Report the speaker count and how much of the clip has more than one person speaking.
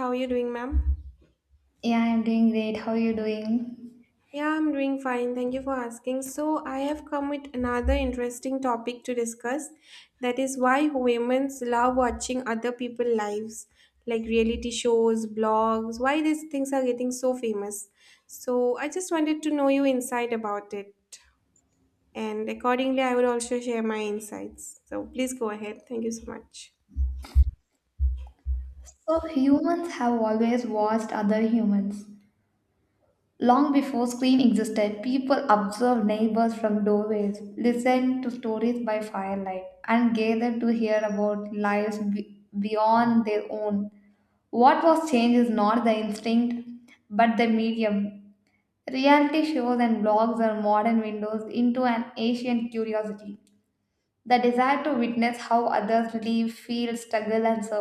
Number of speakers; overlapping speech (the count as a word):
two, no overlap